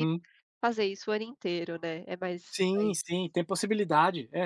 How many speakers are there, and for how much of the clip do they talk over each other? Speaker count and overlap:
2, about 5%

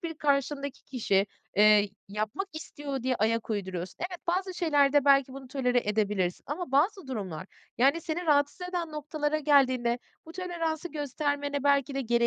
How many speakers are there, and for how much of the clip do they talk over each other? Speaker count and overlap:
1, no overlap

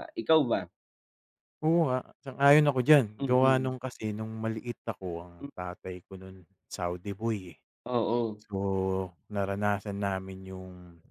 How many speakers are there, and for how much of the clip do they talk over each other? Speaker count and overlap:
2, about 5%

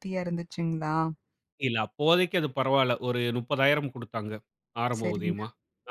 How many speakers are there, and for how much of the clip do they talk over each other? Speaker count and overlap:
2, about 8%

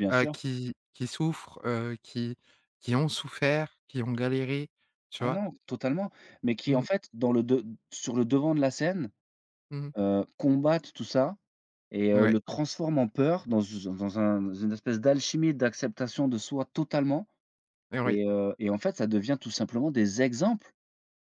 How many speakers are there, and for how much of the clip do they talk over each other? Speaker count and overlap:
2, about 5%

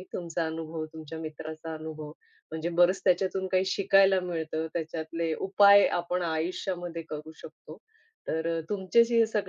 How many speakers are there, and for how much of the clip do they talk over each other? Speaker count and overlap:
1, no overlap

